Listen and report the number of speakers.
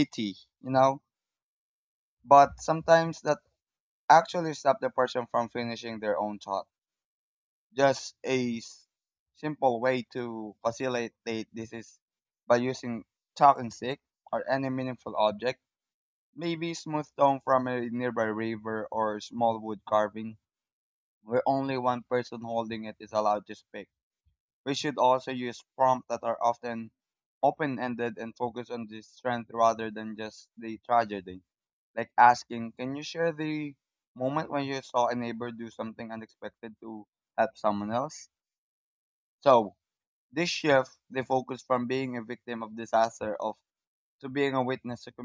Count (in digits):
1